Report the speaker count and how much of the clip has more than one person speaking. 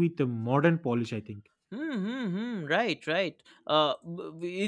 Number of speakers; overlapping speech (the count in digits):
2, no overlap